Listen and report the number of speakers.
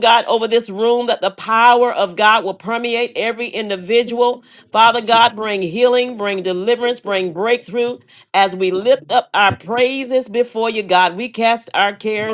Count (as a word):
one